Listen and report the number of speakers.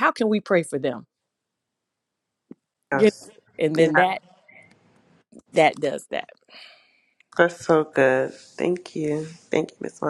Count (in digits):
2